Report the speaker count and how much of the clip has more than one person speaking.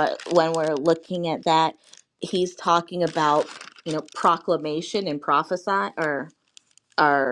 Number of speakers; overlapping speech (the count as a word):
one, no overlap